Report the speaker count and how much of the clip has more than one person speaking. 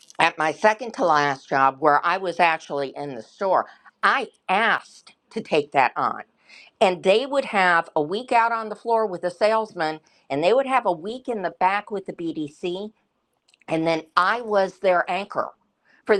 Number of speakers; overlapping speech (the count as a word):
one, no overlap